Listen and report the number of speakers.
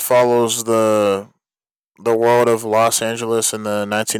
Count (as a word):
one